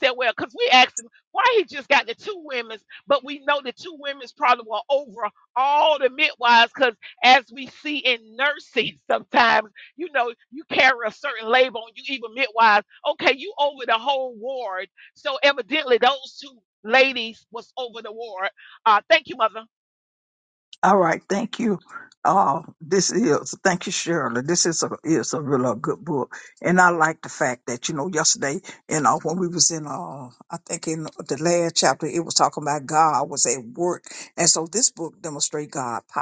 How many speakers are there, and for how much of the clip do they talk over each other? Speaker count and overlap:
two, no overlap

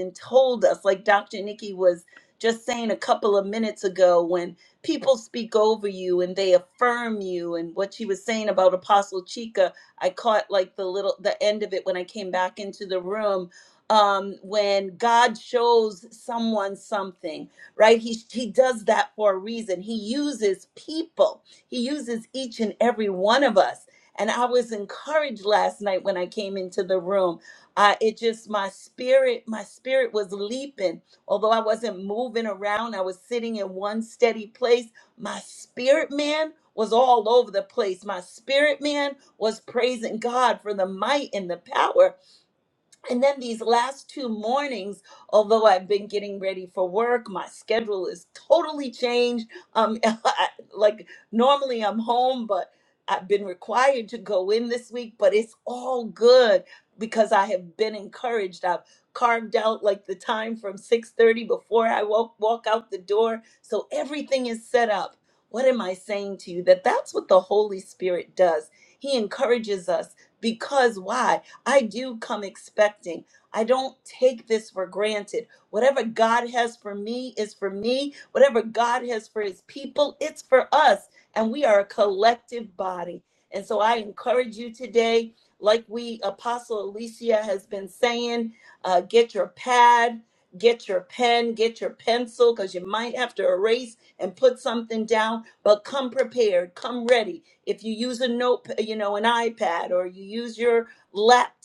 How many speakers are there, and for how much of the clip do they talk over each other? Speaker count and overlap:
one, no overlap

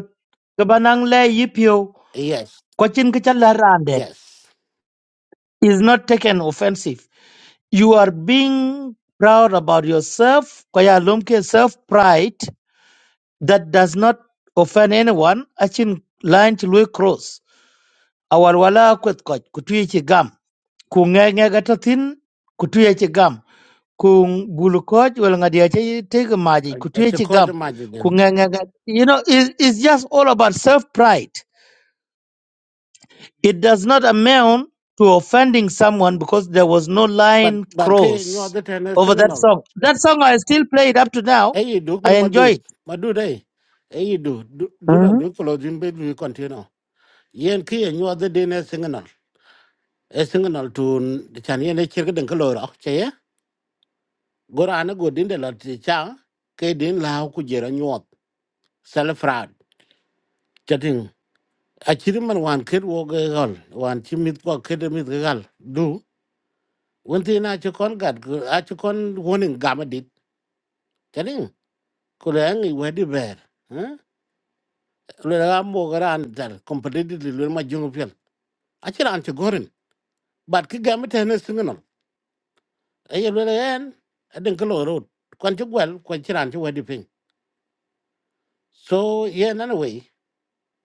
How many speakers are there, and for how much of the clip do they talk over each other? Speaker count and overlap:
two, about 3%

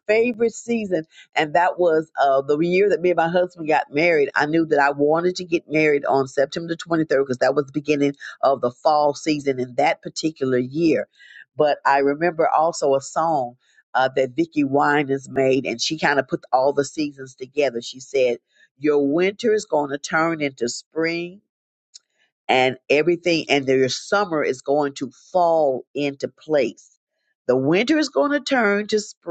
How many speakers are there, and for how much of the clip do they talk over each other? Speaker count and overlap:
one, no overlap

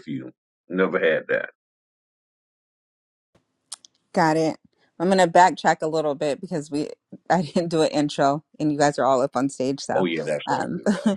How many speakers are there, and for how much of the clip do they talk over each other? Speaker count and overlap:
two, about 4%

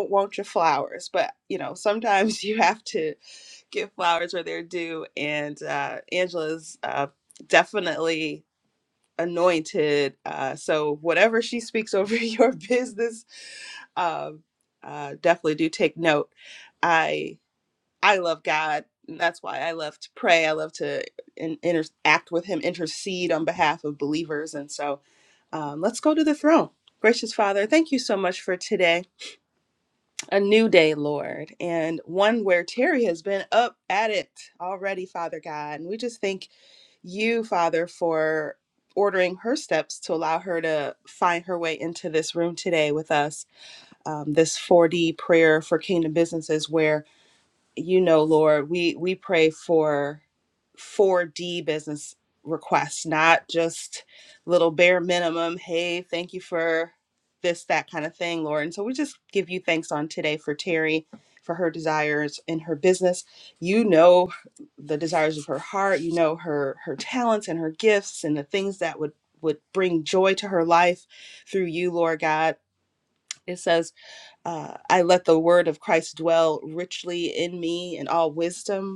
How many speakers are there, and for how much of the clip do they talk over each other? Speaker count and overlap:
one, no overlap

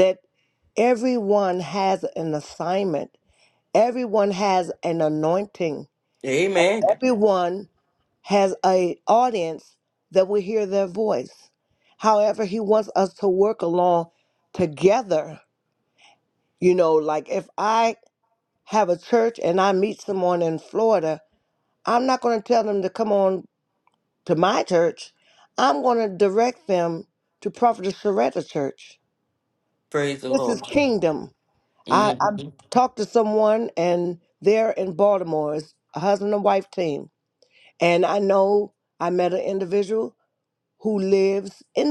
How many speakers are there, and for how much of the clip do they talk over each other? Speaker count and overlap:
two, about 2%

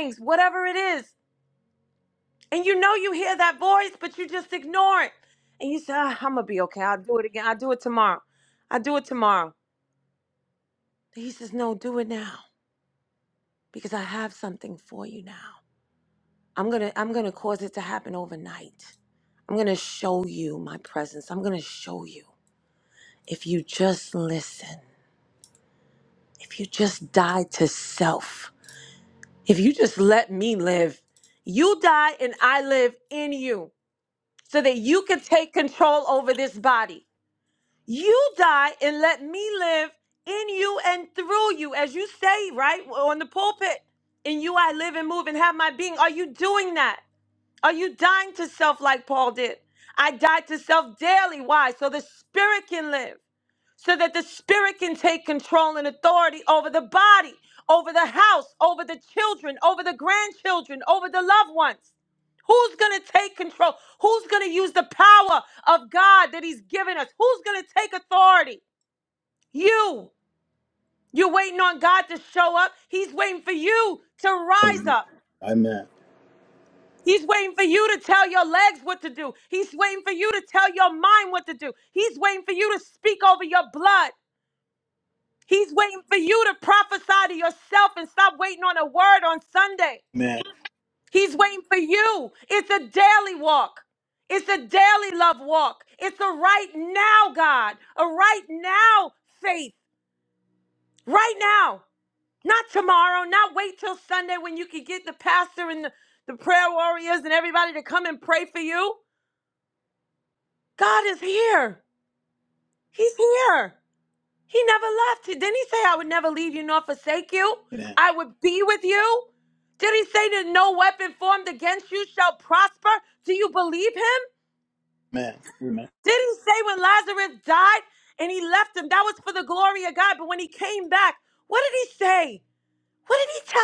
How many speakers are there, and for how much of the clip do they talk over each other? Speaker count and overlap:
two, under 1%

